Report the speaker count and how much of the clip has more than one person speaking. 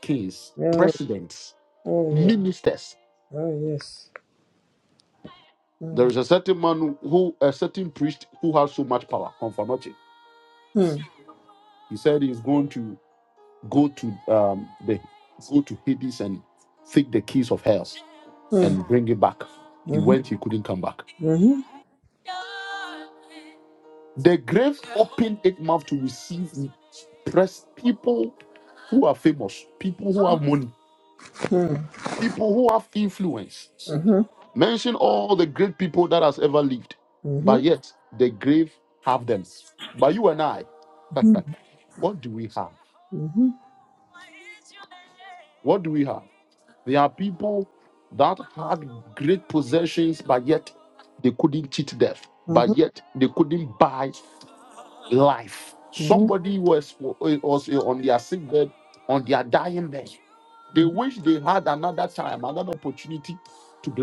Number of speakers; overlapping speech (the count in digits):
2, about 3%